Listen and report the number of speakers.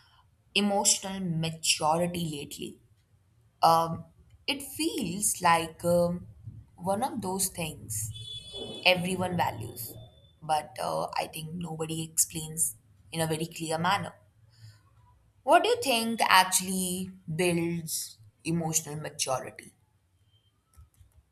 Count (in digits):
1